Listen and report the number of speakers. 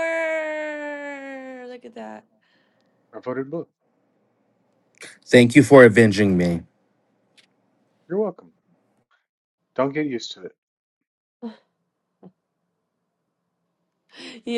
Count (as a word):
three